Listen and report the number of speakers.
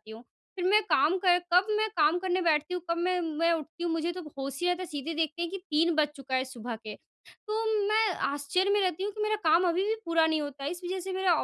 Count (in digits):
1